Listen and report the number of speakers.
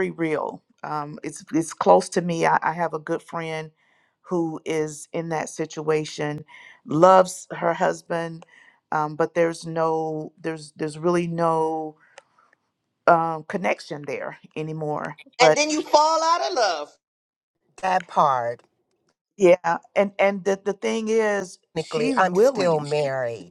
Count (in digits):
3